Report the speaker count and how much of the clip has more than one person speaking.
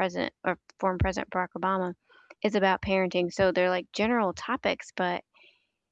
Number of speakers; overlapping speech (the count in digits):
1, no overlap